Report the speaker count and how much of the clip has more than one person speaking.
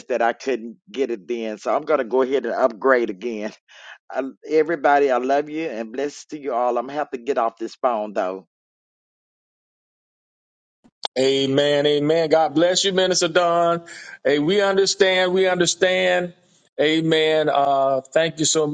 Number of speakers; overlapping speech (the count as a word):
two, no overlap